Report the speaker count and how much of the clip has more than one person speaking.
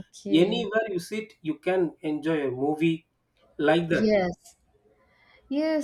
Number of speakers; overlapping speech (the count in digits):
2, about 9%